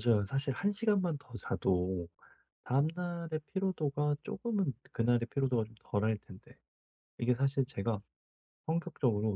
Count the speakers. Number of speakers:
1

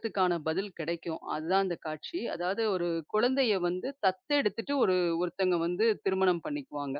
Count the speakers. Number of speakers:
1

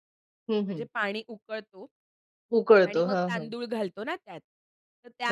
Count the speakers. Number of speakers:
2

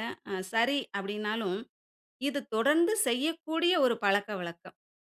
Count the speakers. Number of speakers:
1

